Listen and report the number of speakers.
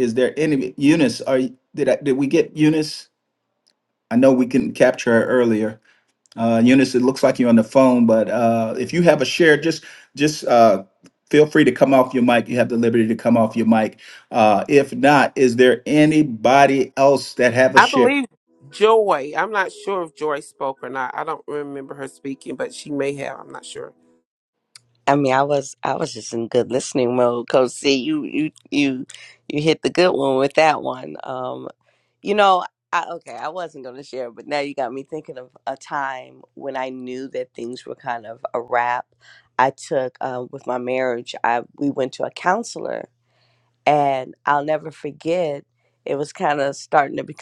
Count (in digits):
3